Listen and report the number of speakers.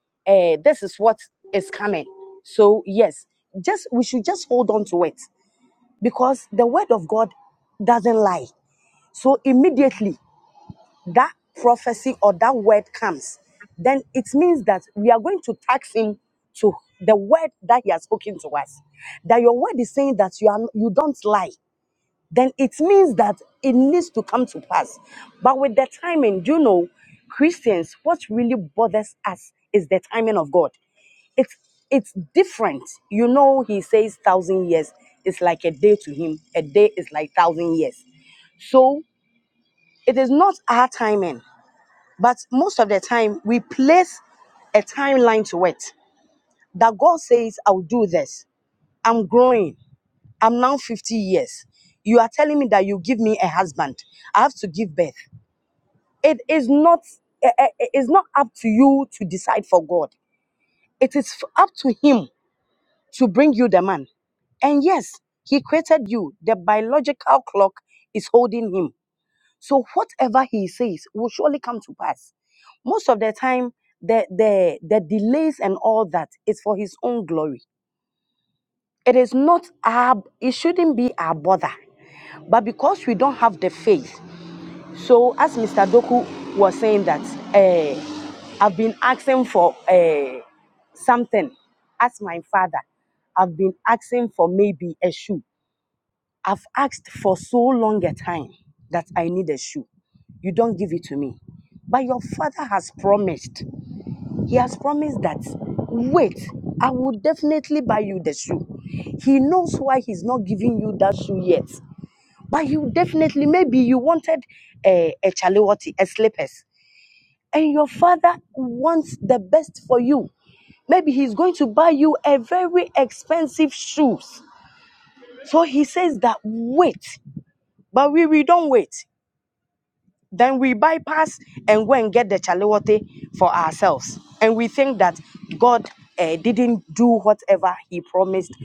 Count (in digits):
1